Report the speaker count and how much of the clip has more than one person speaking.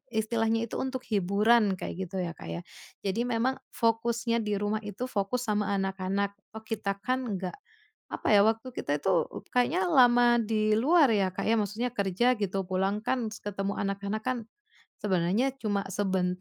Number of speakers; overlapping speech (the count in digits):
1, no overlap